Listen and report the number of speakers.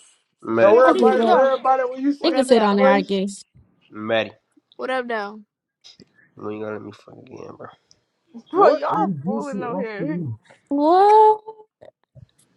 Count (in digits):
5